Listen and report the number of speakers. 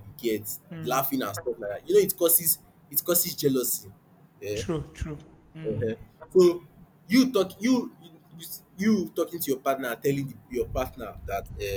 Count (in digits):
2